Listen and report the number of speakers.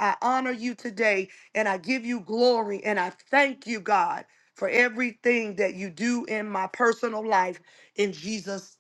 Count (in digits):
1